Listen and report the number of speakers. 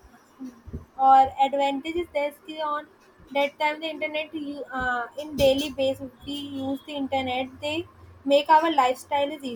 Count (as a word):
one